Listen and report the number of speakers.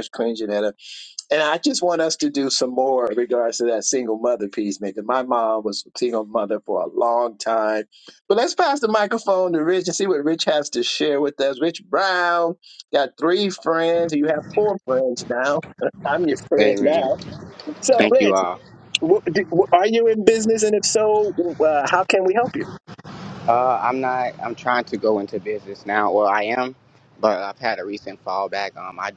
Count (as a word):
two